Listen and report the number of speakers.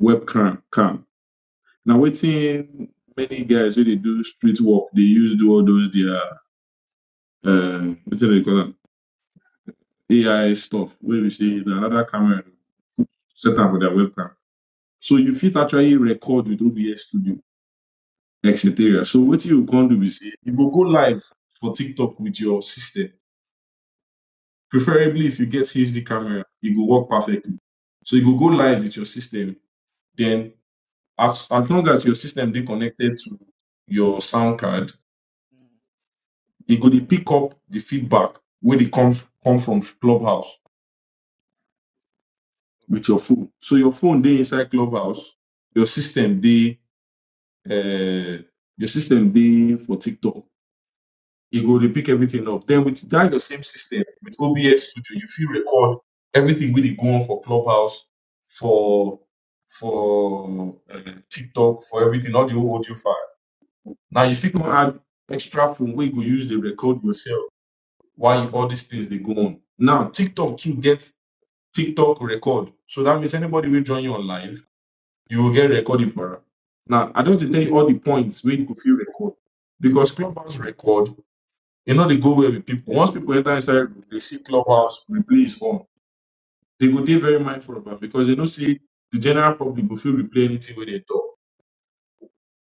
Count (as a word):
one